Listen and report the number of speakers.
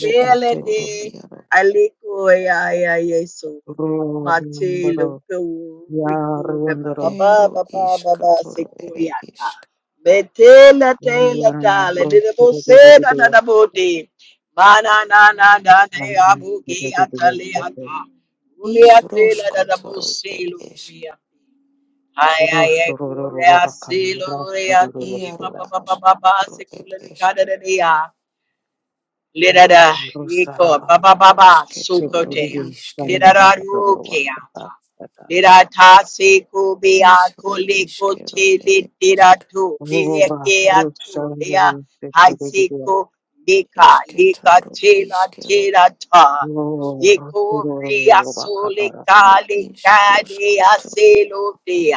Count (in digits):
3